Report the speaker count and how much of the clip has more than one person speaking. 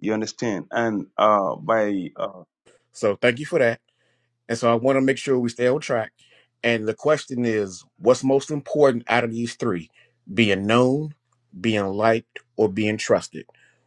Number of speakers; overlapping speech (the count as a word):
two, no overlap